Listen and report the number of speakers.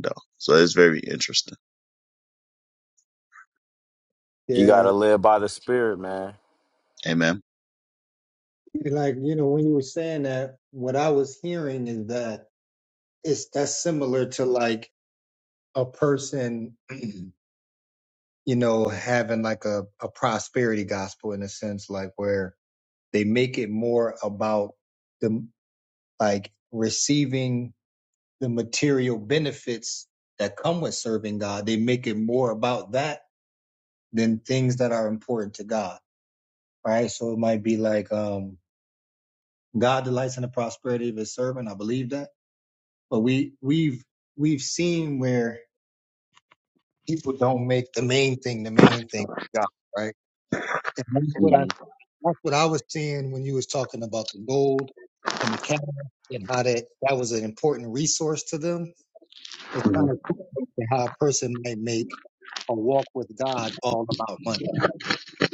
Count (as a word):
three